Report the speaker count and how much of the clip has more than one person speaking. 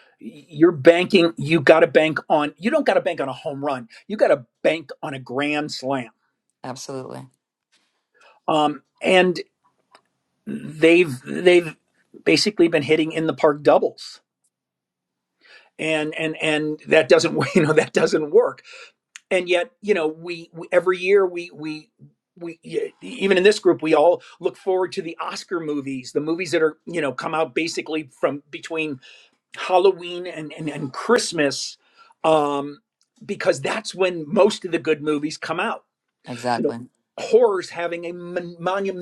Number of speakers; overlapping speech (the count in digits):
2, under 1%